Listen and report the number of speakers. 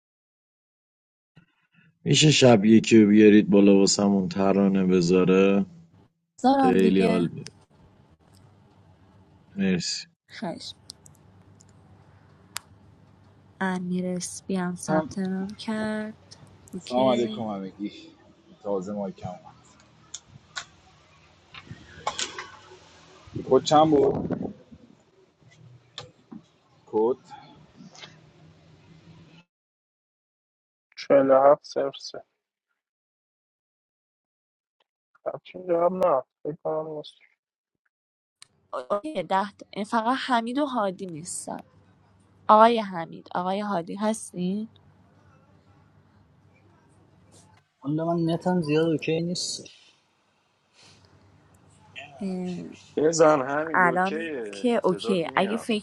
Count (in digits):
6